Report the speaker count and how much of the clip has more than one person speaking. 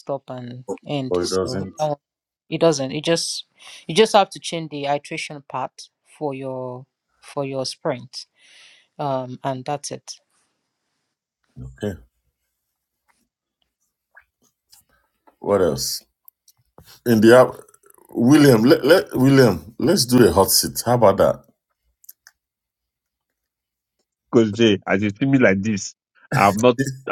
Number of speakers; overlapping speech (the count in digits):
3, about 2%